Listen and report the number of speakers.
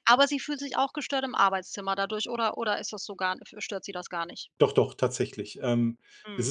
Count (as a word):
two